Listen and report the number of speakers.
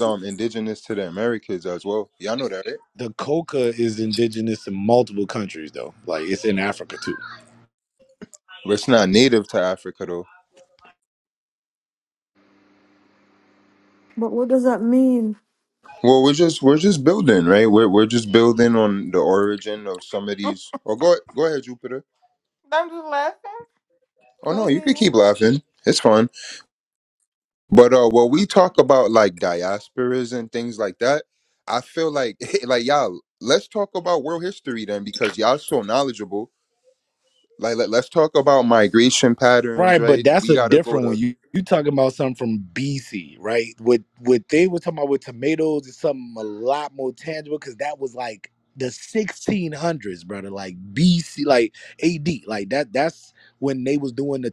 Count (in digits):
4